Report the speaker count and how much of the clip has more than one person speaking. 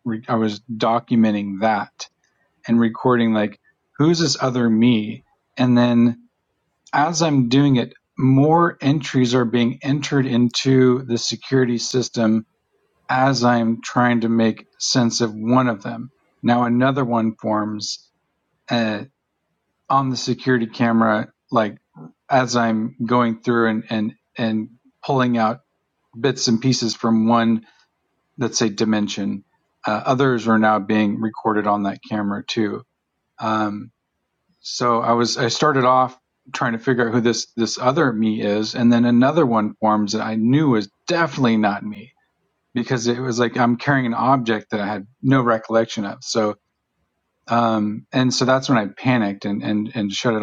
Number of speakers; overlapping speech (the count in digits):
1, no overlap